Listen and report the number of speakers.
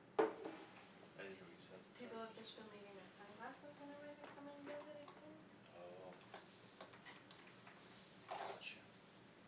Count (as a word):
two